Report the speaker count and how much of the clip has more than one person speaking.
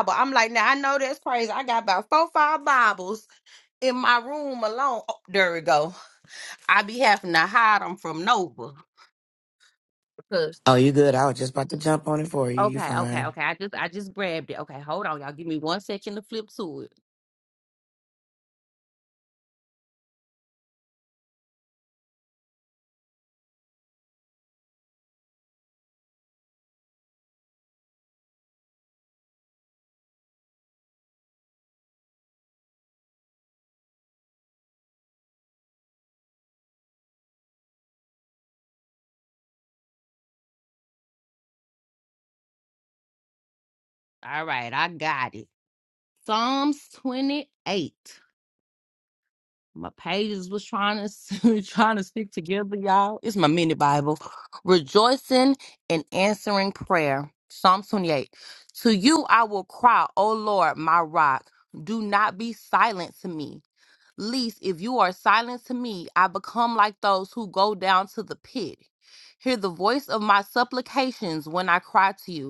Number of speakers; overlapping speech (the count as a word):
two, about 1%